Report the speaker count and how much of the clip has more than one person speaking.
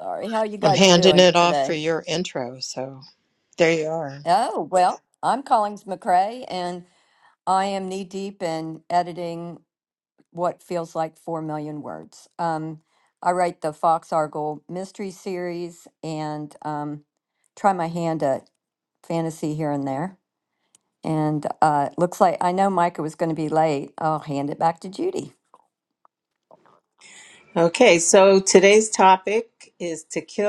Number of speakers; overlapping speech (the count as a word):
three, about 4%